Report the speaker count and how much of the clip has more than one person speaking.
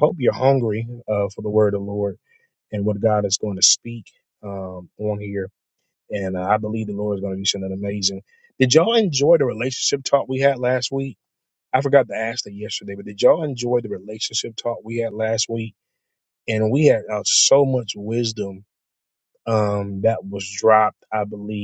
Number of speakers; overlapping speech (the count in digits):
1, no overlap